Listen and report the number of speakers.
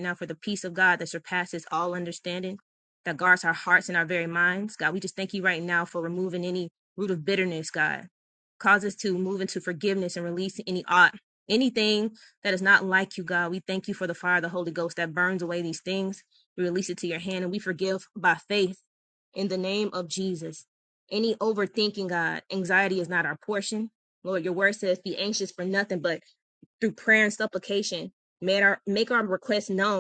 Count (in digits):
1